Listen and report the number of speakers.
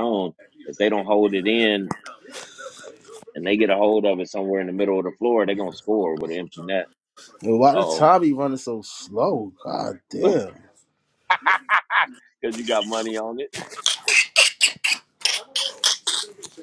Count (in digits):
2